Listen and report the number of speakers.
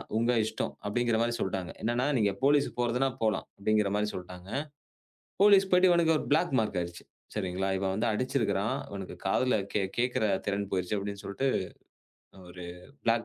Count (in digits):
1